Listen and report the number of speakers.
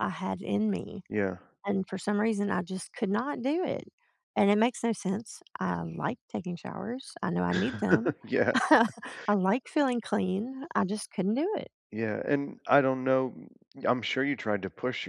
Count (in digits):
2